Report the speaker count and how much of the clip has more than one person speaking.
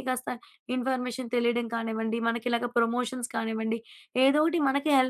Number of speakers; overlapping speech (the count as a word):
one, no overlap